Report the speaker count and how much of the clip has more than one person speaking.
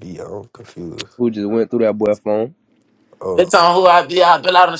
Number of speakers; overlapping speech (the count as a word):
three, about 3%